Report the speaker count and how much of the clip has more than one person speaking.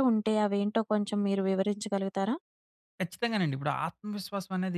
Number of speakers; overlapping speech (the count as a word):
two, no overlap